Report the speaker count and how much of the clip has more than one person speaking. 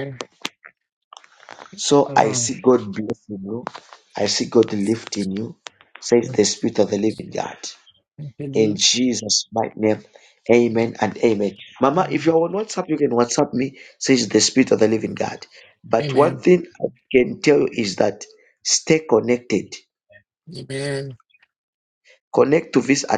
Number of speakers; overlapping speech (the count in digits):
2, about 6%